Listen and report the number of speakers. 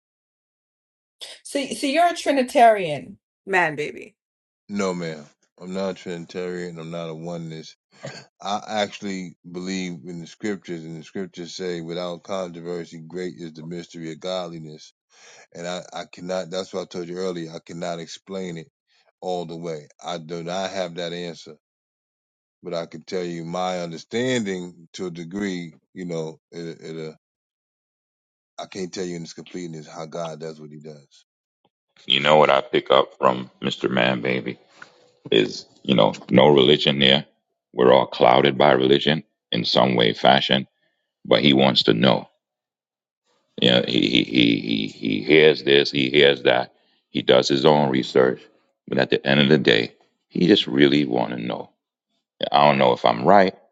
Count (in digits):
3